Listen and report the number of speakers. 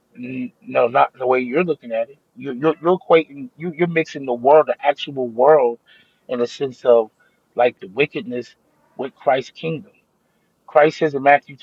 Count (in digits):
1